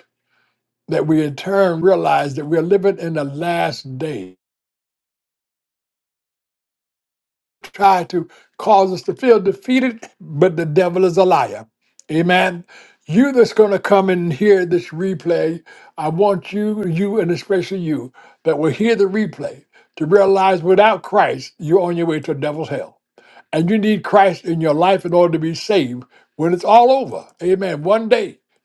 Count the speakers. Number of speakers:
one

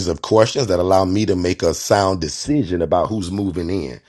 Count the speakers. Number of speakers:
one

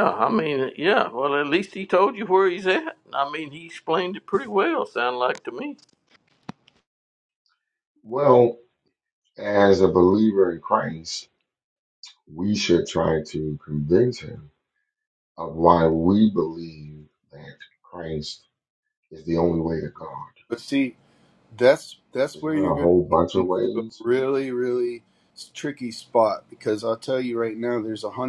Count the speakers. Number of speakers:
three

